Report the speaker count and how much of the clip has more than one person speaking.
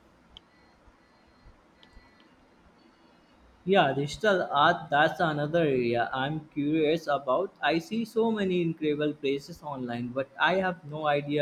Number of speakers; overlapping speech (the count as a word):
one, no overlap